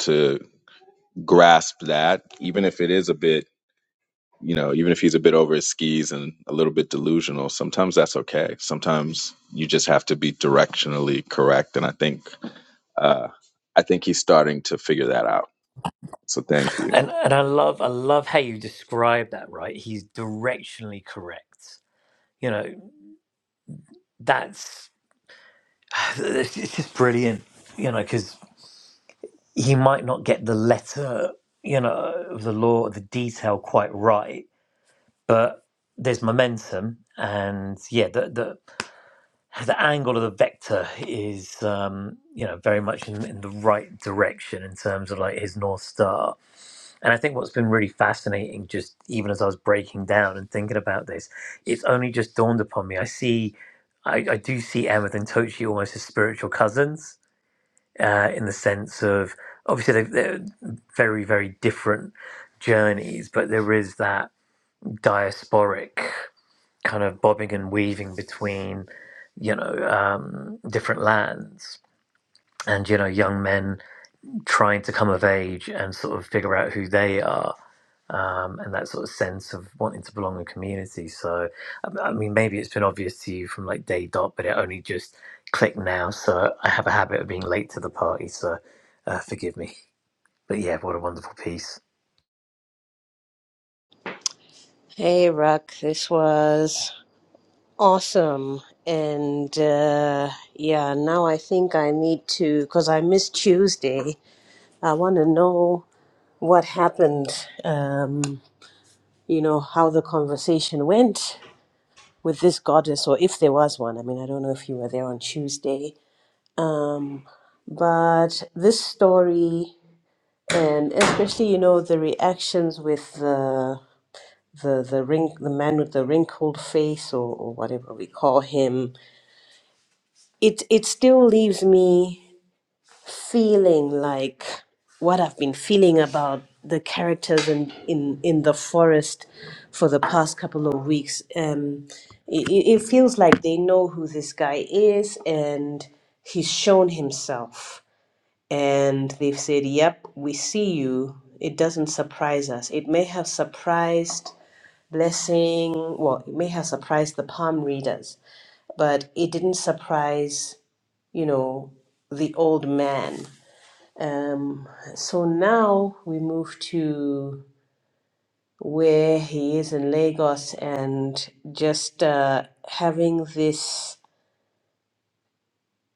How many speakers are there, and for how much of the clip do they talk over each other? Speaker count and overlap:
three, under 1%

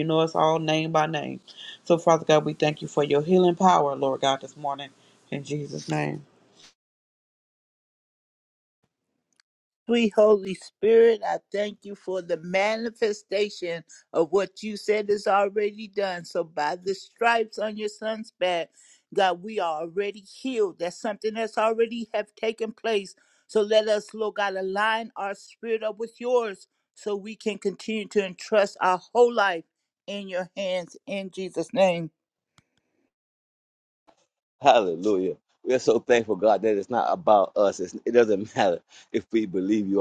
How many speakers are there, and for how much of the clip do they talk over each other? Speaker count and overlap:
three, no overlap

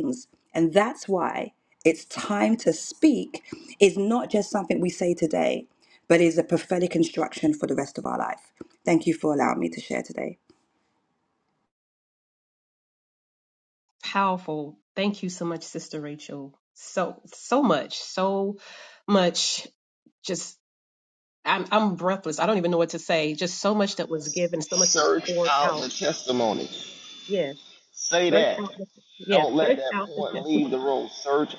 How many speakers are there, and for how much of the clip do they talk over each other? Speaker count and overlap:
three, about 9%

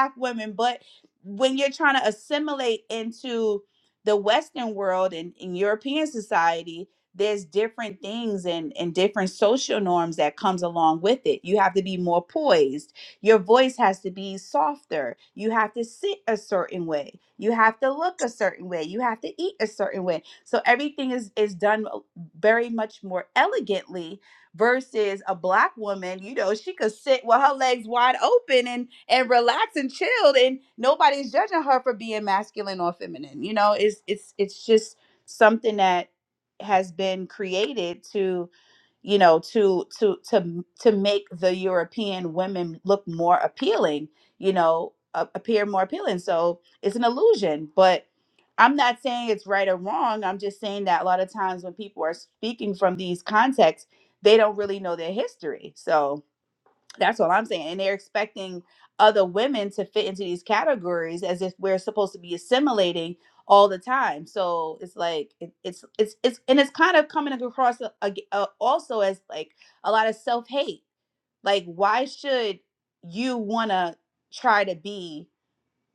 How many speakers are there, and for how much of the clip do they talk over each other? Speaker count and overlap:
one, no overlap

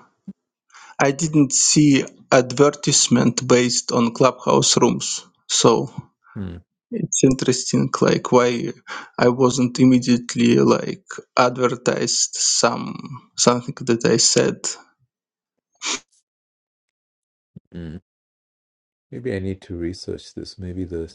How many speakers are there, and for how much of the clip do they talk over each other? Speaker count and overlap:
two, no overlap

